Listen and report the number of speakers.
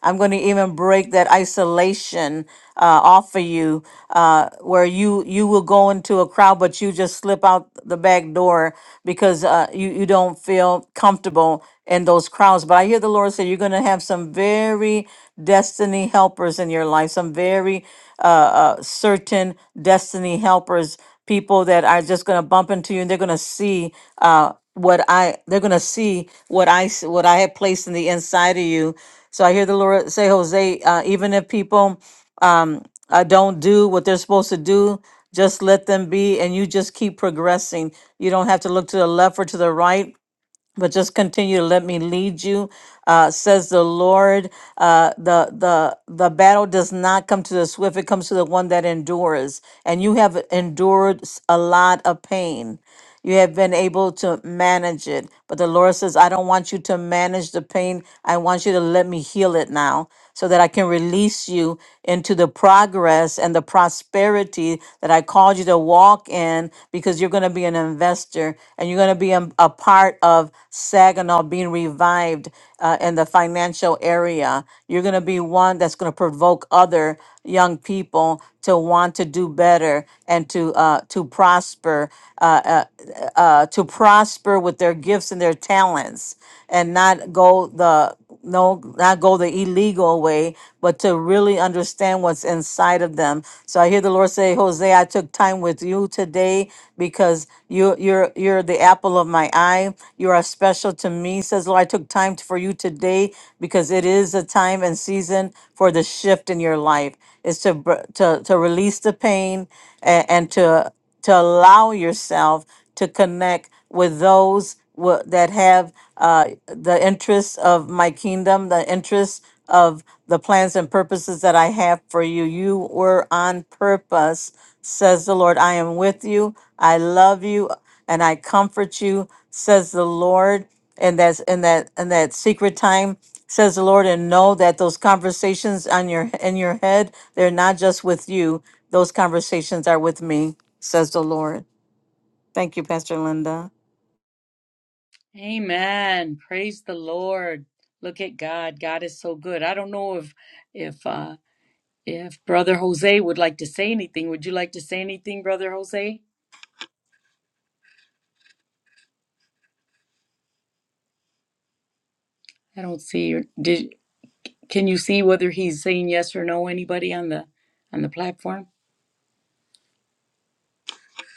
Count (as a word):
two